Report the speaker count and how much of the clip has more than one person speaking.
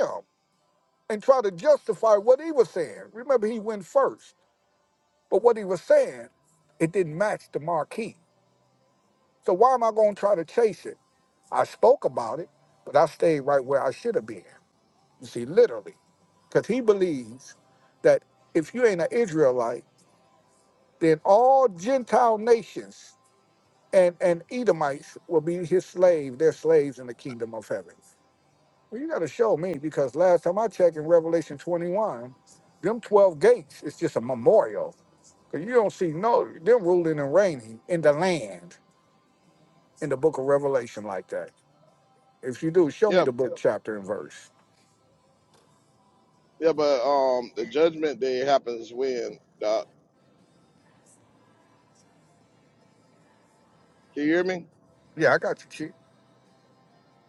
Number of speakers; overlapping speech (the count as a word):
two, under 1%